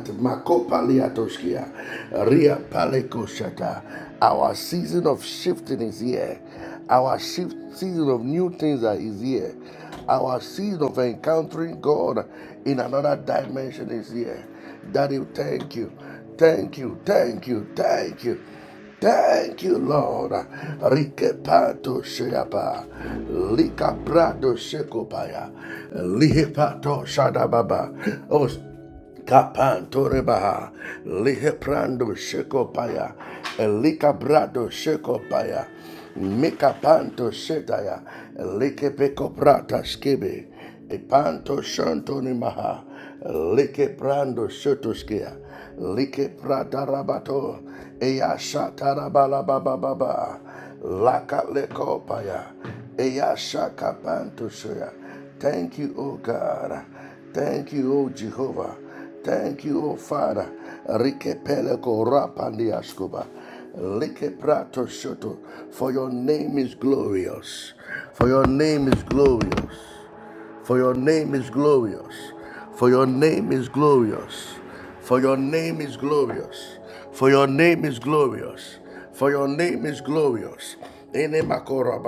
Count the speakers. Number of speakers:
1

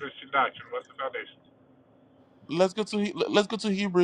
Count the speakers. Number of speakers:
2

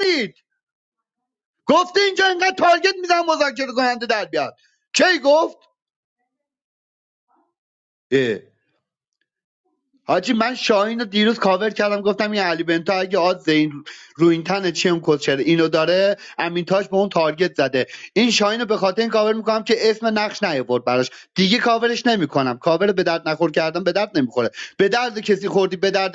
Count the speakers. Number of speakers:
1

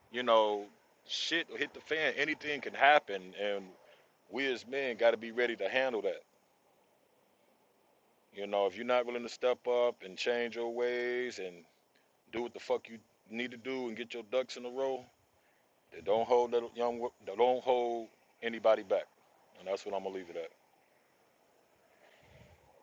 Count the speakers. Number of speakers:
1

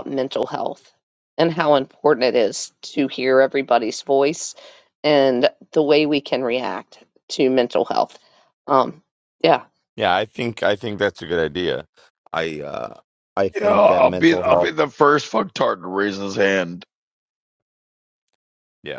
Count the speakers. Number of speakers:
3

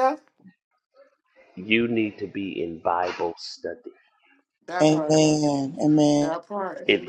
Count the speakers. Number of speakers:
3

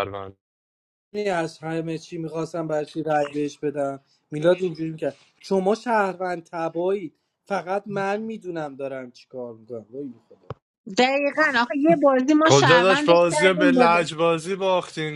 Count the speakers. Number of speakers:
3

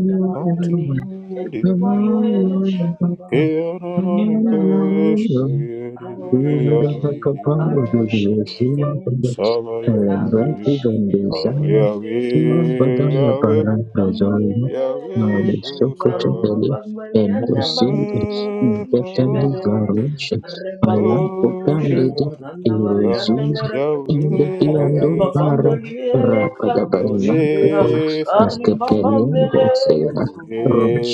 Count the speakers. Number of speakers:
3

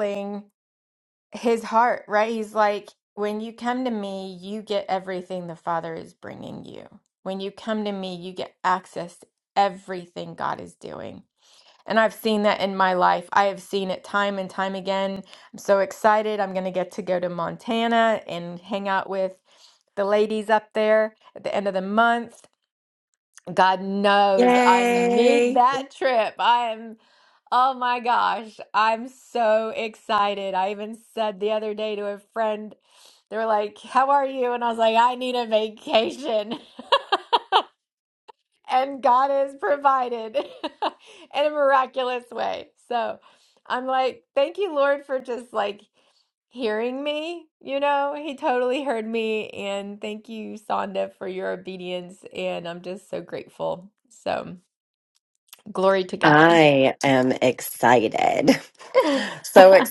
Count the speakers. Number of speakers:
2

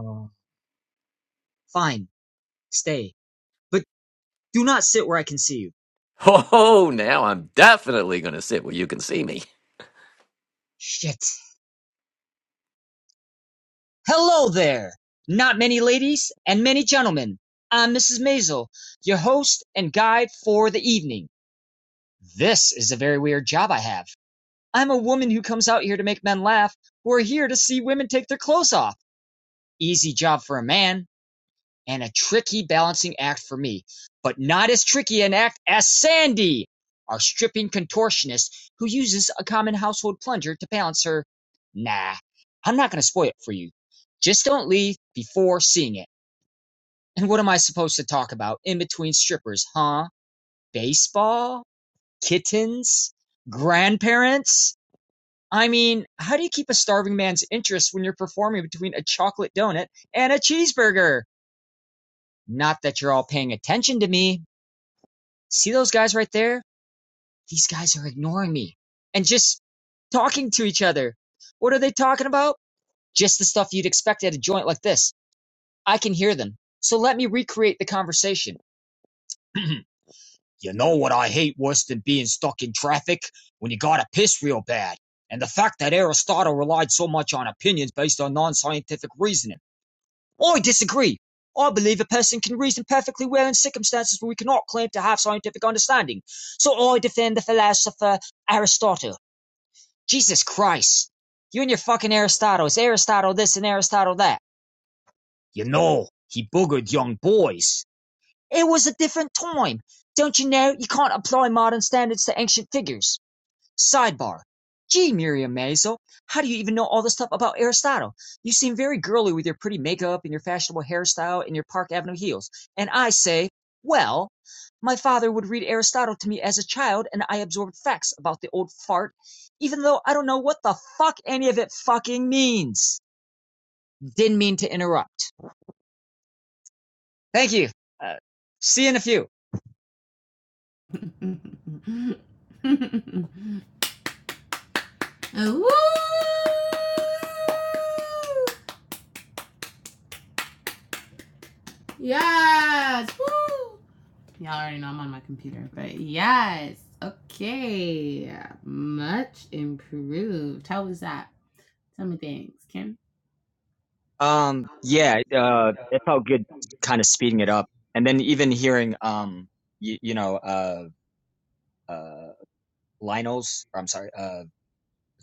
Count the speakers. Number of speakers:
3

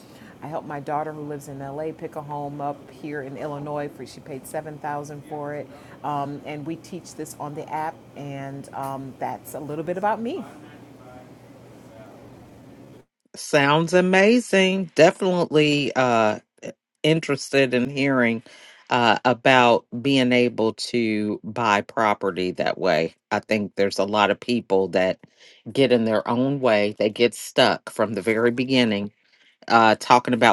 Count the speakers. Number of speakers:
2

